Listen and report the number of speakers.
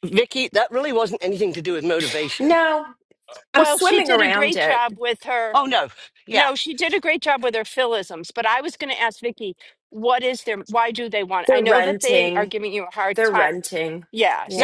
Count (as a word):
three